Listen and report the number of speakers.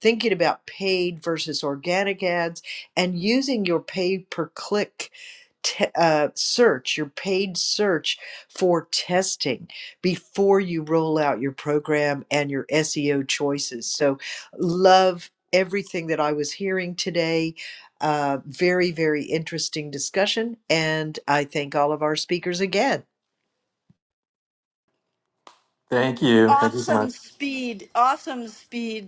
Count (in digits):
3